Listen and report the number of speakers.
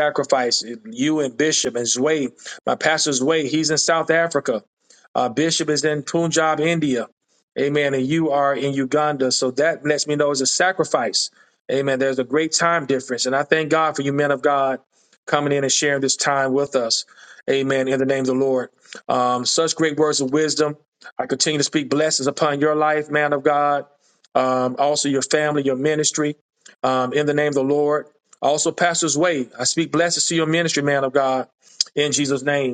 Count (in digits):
1